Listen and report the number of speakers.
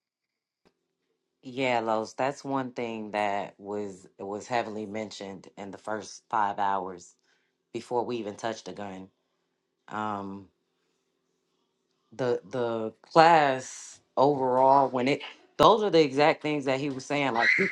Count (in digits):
1